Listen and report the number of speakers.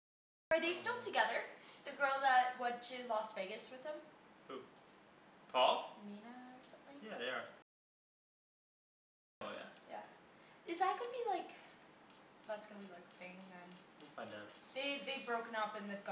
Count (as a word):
two